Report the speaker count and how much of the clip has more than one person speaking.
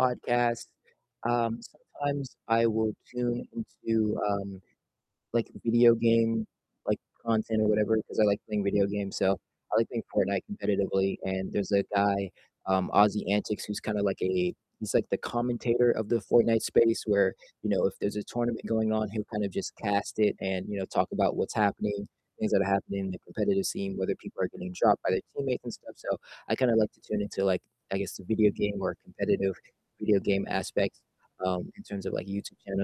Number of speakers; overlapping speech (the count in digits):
1, no overlap